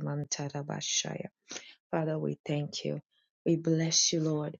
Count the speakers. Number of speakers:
1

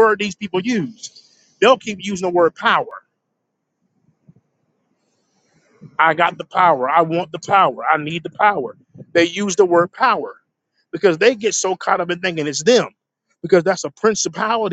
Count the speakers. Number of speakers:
1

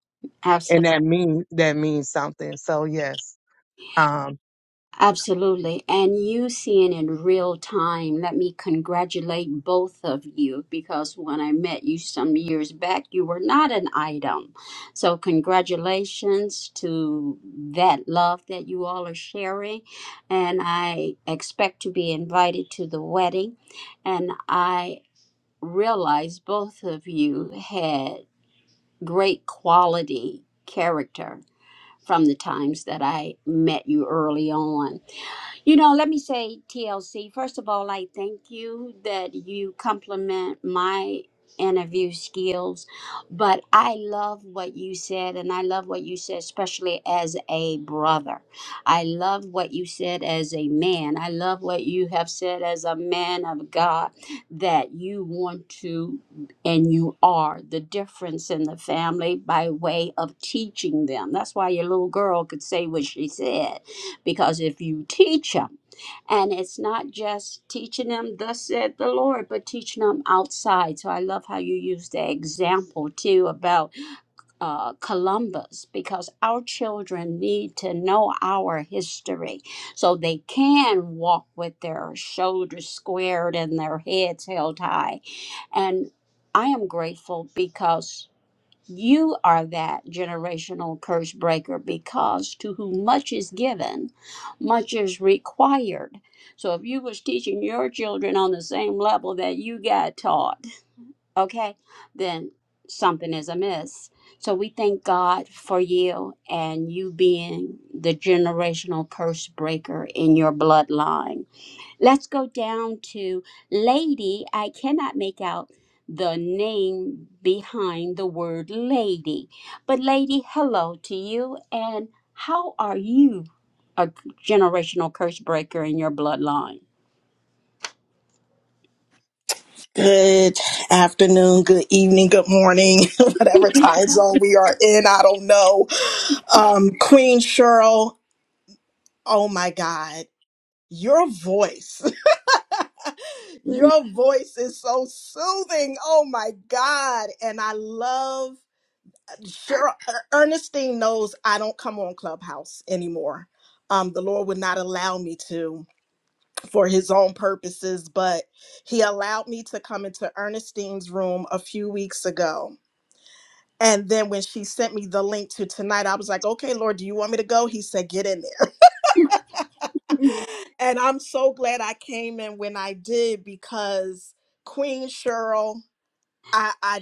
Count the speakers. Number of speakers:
3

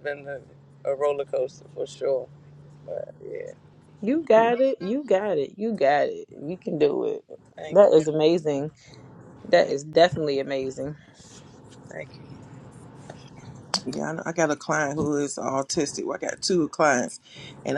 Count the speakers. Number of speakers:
3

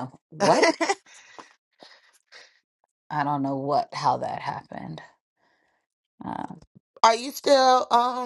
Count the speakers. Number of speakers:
2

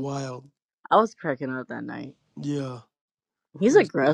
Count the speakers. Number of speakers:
2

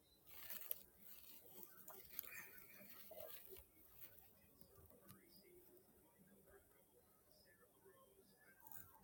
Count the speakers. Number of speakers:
0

